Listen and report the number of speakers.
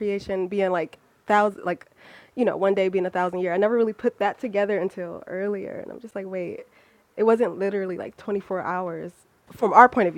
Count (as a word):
one